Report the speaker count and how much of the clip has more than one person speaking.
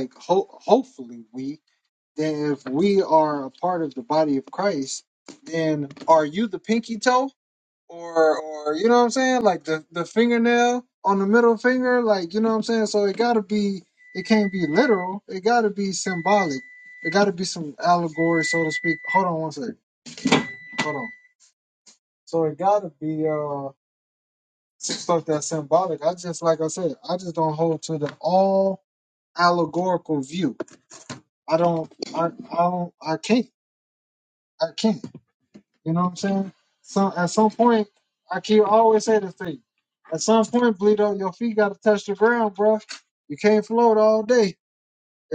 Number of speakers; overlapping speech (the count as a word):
one, no overlap